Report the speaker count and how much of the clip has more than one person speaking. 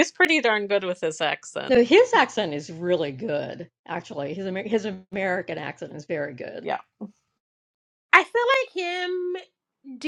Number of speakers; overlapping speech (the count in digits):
3, under 1%